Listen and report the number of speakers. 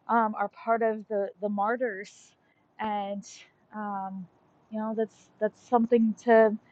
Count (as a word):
one